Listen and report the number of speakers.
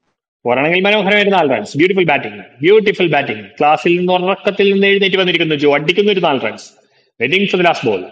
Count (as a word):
one